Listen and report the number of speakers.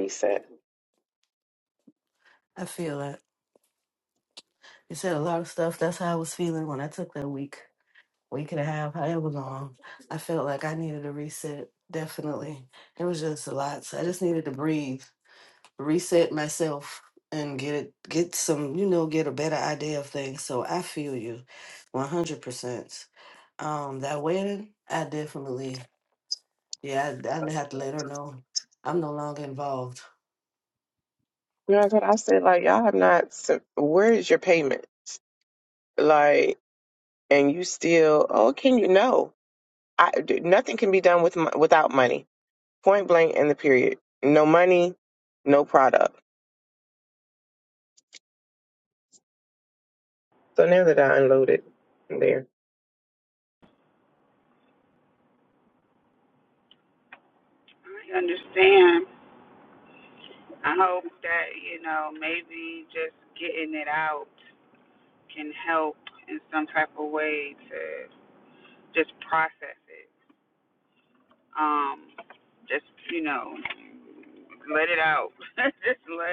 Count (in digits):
3